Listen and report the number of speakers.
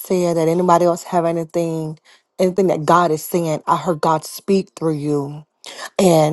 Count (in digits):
1